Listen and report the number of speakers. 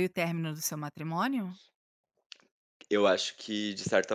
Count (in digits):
2